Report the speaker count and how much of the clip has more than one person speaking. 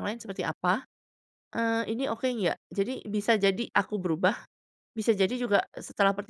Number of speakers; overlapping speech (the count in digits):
1, no overlap